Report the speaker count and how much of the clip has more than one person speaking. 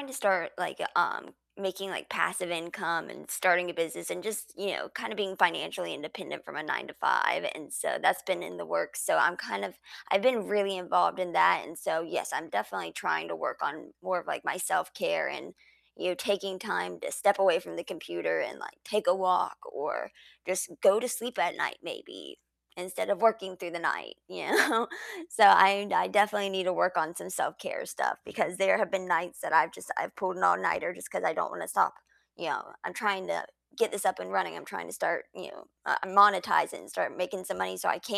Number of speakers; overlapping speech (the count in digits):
1, no overlap